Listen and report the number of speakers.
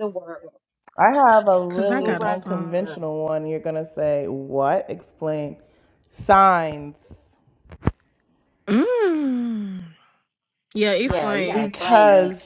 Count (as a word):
three